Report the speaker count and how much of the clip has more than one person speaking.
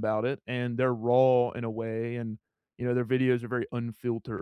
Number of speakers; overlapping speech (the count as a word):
one, no overlap